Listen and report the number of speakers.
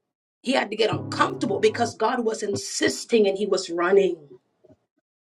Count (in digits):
1